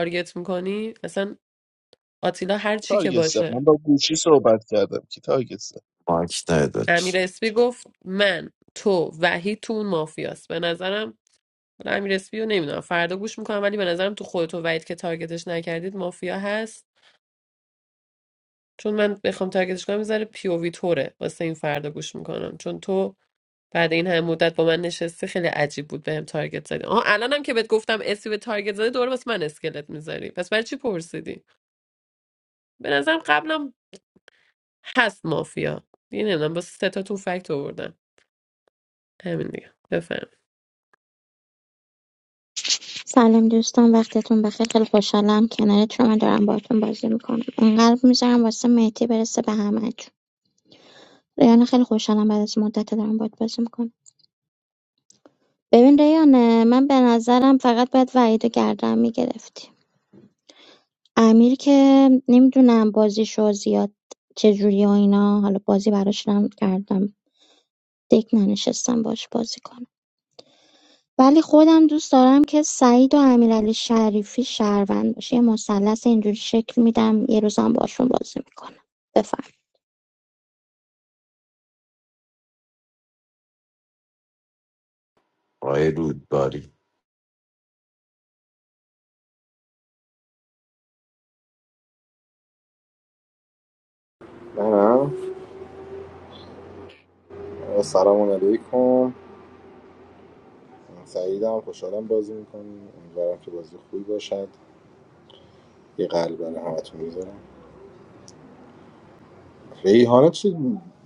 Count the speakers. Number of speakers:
5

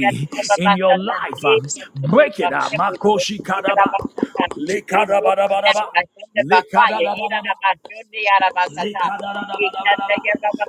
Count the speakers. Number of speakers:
2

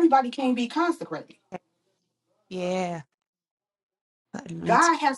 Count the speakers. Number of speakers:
2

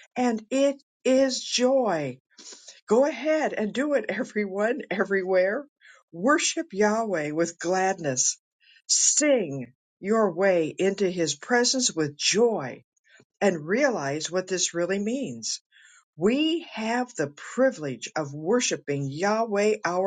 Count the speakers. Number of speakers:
1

